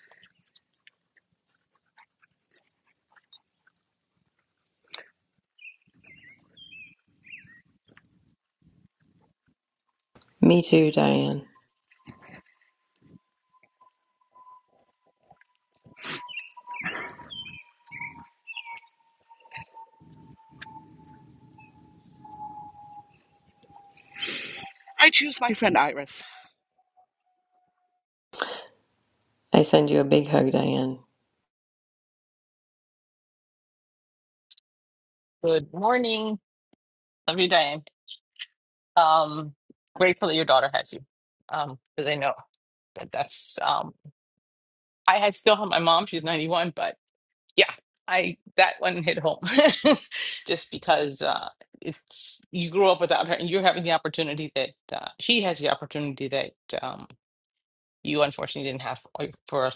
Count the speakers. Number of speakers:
3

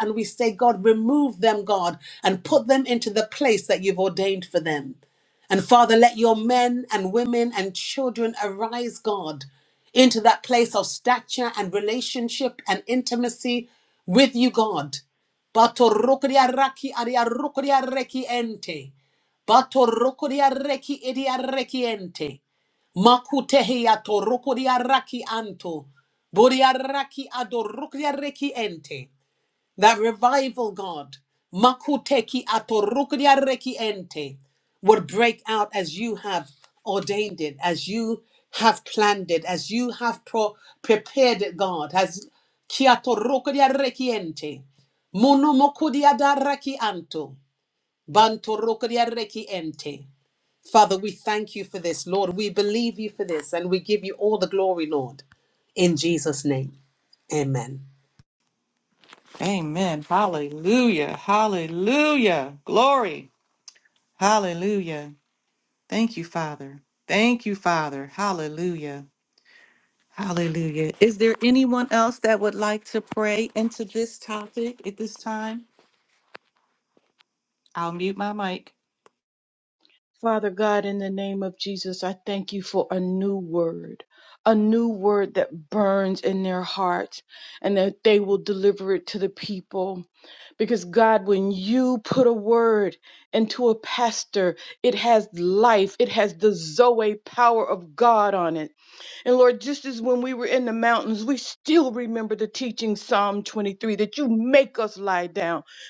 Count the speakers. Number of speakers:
3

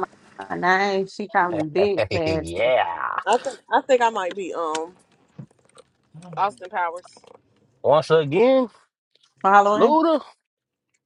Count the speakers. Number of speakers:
3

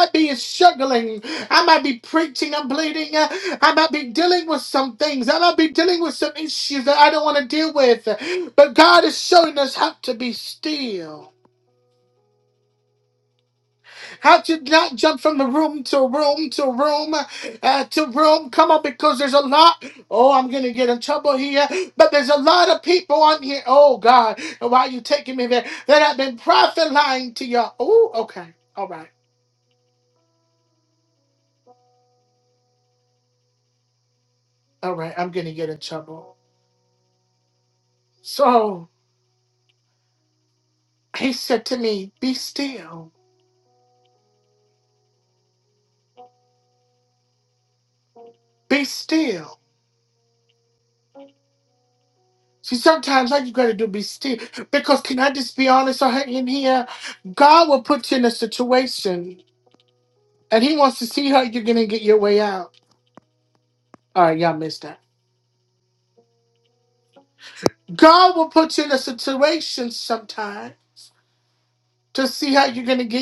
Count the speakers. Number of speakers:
1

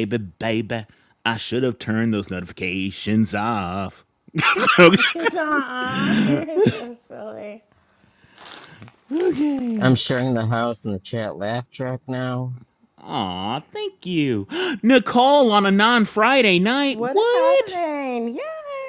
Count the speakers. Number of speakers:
3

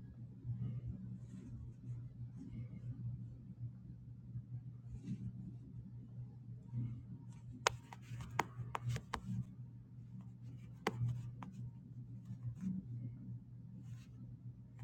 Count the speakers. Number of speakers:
0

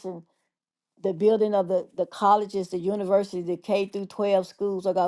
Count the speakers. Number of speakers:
1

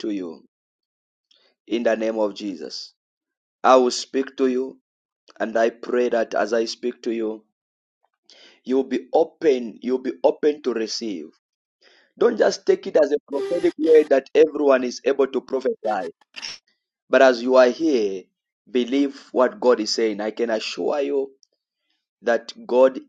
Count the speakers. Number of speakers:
1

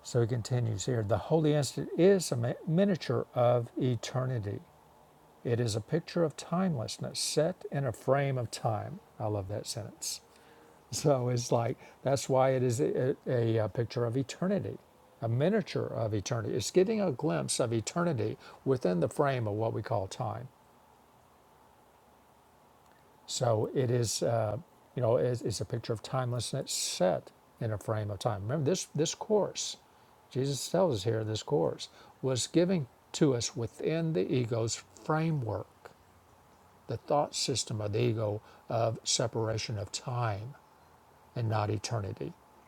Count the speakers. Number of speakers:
1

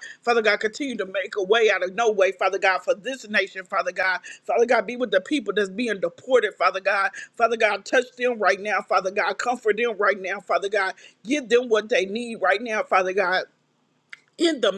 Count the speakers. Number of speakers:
1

